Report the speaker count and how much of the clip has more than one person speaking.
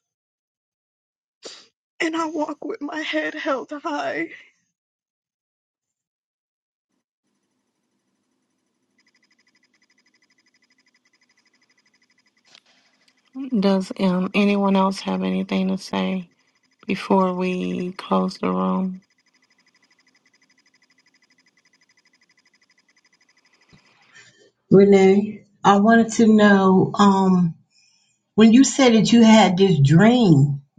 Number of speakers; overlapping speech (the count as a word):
three, no overlap